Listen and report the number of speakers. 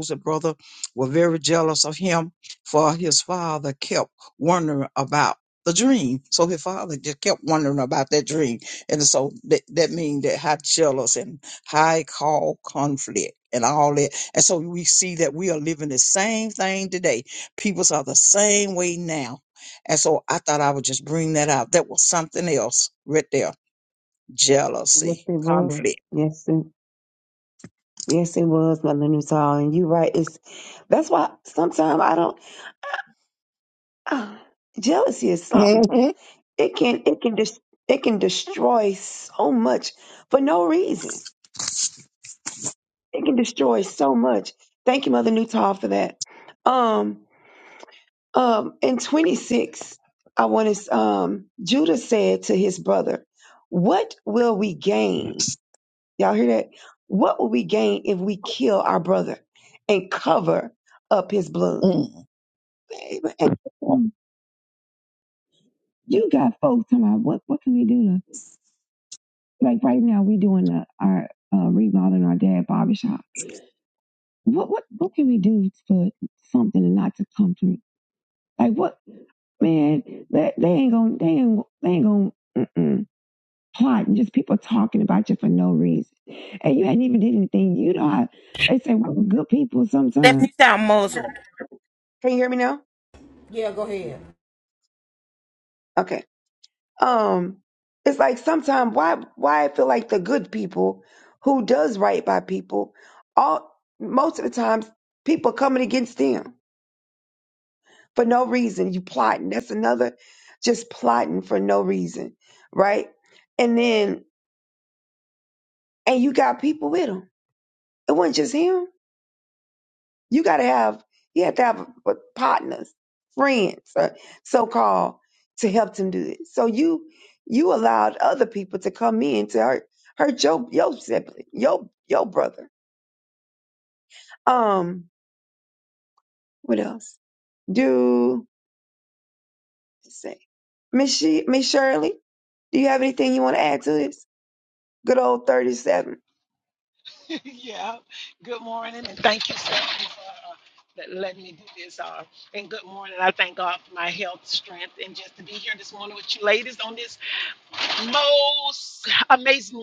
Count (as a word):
four